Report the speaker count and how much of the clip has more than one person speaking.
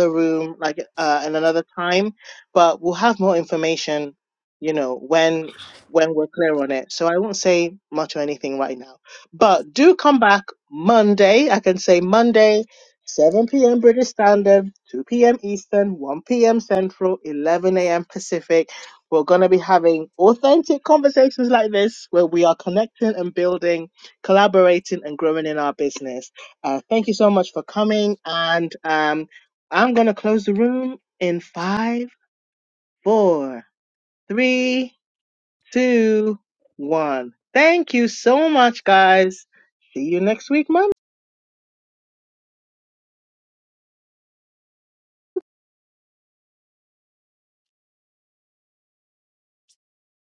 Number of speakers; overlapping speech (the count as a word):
one, no overlap